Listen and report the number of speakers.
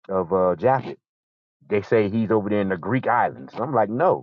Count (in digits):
1